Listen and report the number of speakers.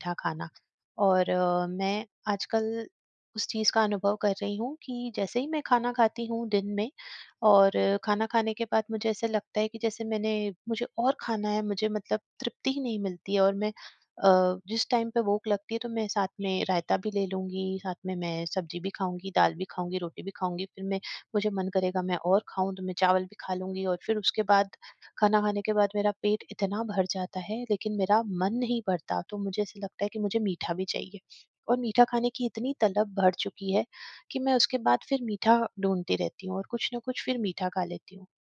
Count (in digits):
1